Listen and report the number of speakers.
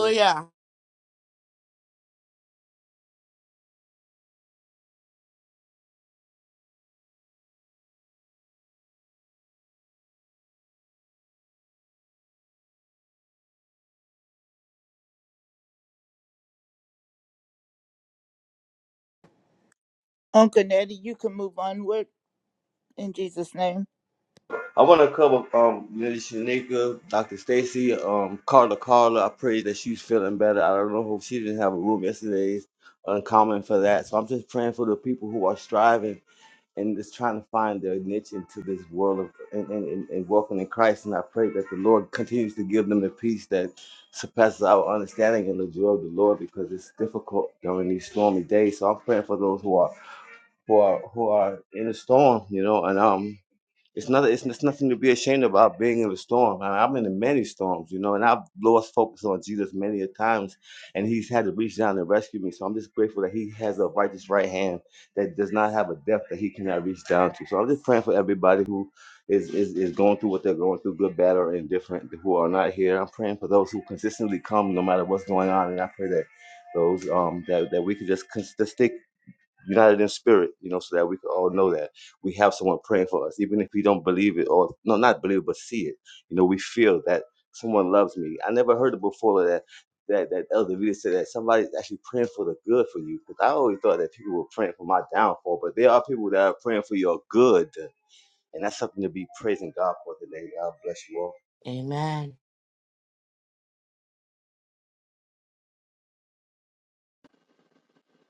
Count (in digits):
3